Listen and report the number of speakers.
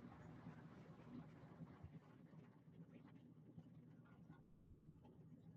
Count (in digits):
0